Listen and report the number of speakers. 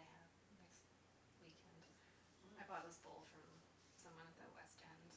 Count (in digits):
1